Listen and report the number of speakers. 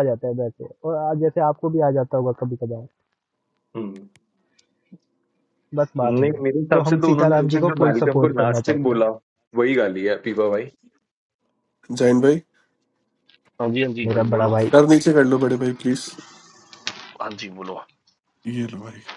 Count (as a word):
four